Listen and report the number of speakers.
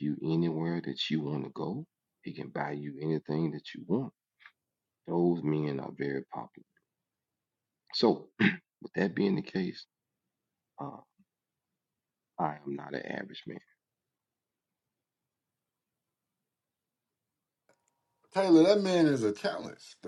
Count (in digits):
2